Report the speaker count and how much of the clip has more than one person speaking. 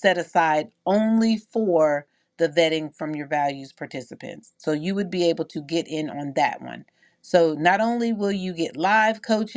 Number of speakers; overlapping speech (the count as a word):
one, no overlap